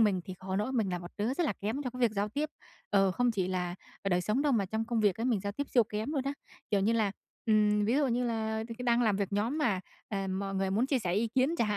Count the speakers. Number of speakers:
one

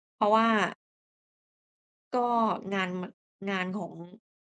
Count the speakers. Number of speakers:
one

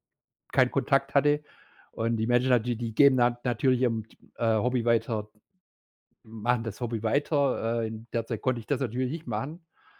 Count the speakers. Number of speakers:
one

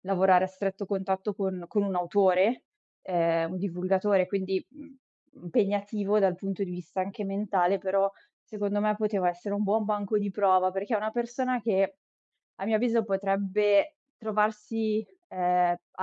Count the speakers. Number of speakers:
one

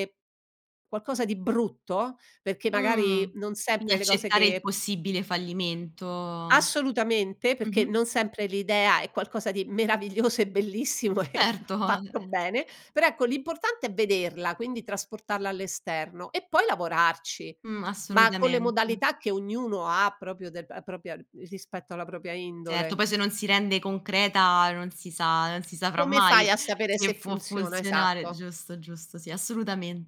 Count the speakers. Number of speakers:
two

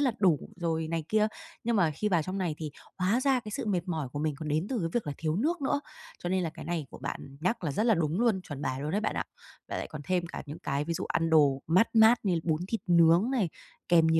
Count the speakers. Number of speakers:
one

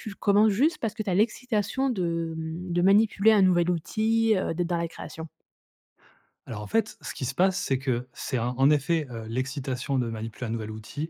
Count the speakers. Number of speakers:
two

